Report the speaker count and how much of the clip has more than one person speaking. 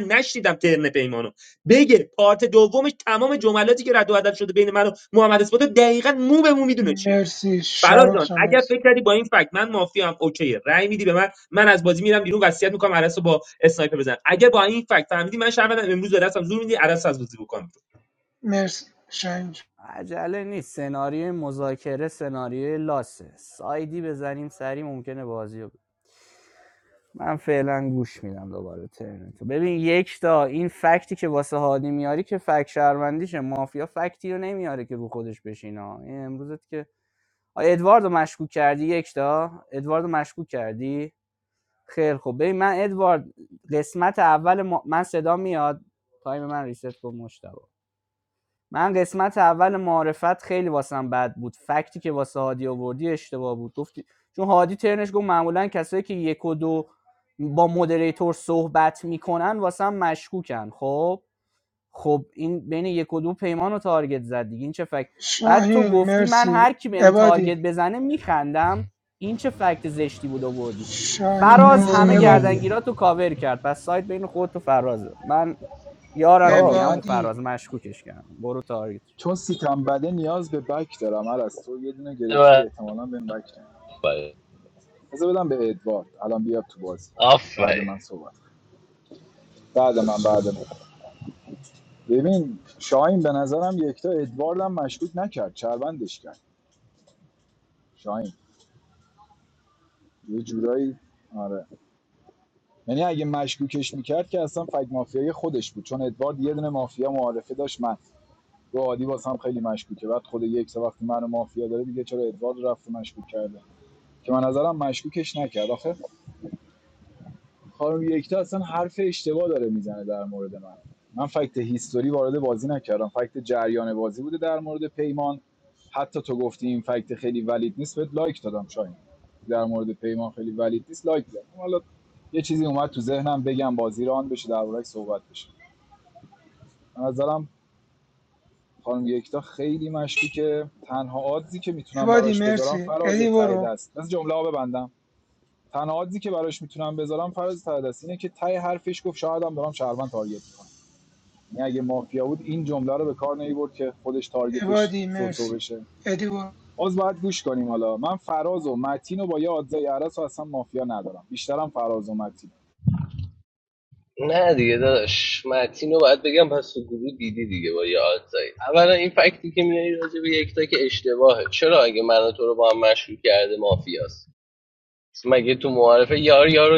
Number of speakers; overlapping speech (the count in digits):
5, about 5%